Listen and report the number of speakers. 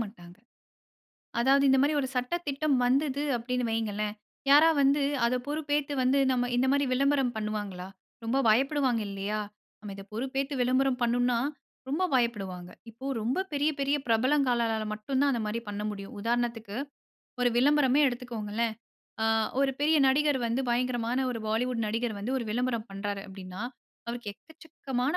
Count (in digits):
1